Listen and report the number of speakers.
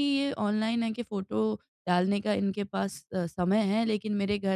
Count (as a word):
one